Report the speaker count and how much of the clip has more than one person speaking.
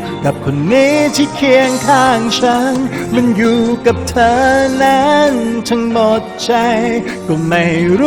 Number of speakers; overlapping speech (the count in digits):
1, no overlap